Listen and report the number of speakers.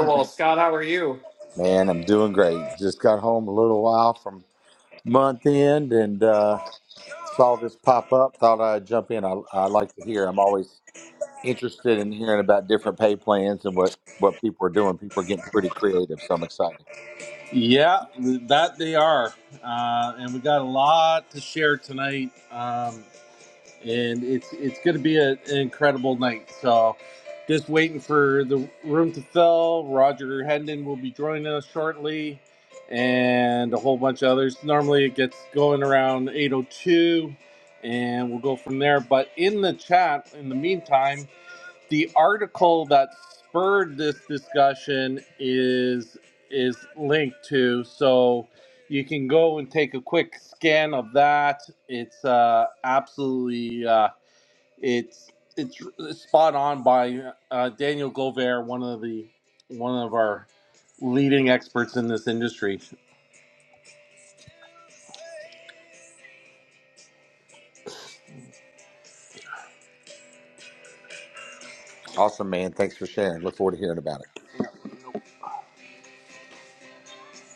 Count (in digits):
3